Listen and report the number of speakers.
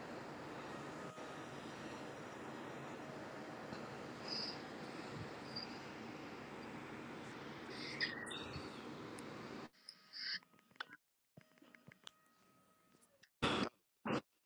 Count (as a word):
zero